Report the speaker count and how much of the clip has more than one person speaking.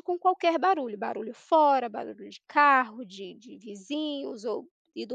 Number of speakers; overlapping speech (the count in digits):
1, no overlap